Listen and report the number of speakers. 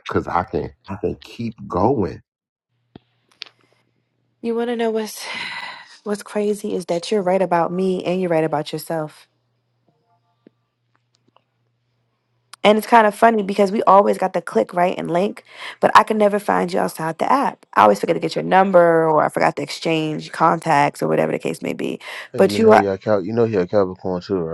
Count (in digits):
3